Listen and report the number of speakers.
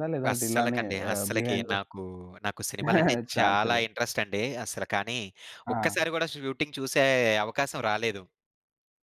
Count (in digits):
2